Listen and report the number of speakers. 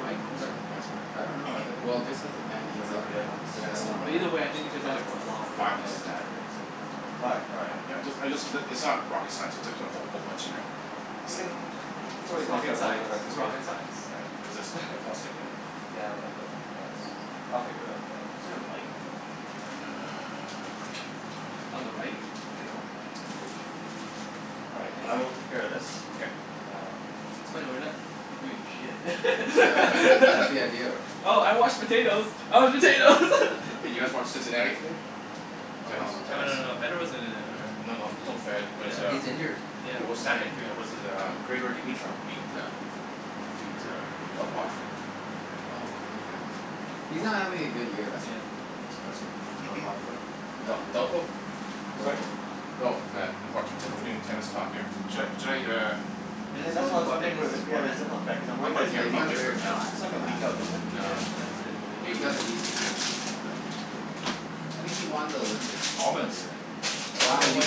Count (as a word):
four